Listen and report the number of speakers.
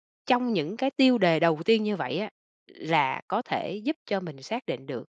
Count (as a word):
one